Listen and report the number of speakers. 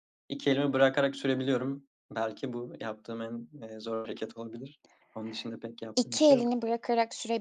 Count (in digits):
2